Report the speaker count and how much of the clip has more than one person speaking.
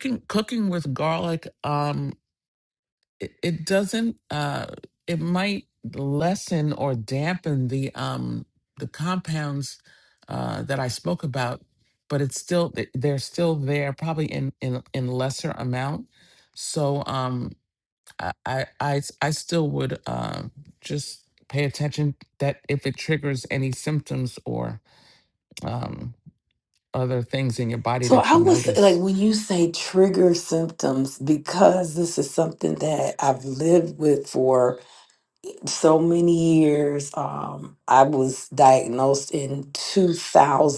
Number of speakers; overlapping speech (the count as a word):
two, about 2%